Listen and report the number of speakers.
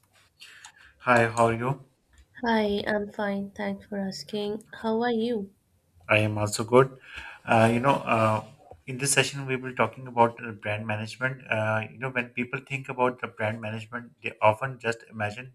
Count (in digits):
2